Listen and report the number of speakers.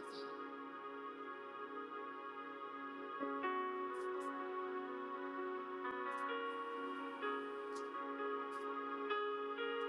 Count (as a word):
zero